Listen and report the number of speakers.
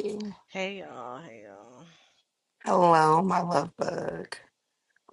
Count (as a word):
two